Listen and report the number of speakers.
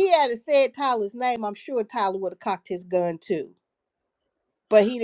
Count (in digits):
1